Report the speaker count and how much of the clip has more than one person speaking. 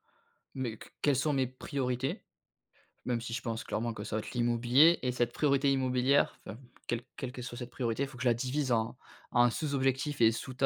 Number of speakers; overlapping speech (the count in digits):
1, no overlap